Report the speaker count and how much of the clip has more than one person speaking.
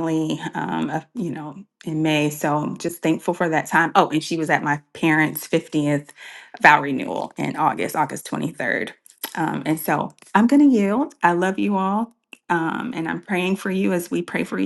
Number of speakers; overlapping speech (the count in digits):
1, no overlap